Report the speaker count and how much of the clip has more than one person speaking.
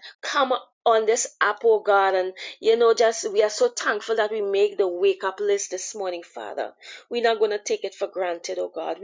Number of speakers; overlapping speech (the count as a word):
one, no overlap